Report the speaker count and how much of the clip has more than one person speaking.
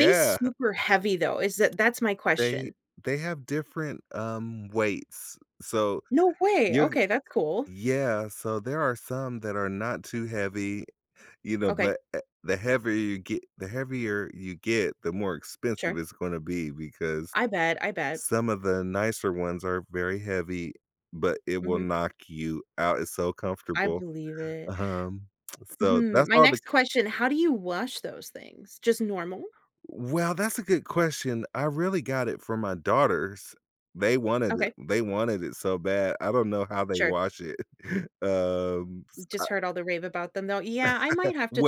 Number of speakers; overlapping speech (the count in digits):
2, about 9%